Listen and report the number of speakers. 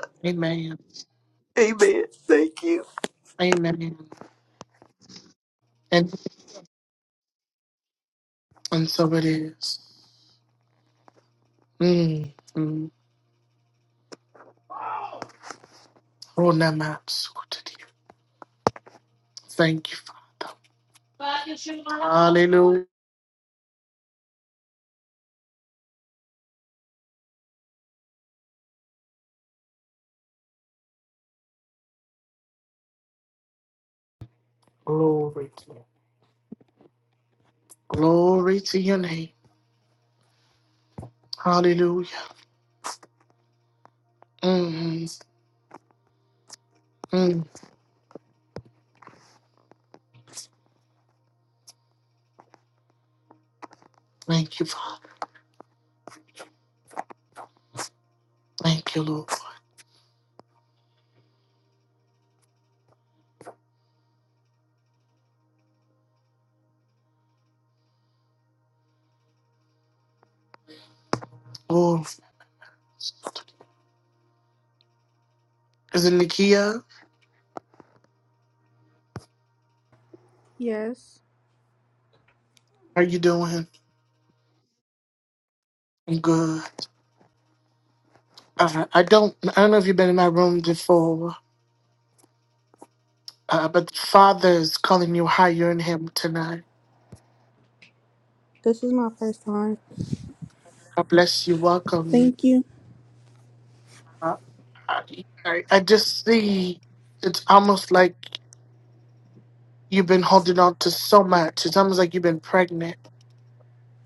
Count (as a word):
three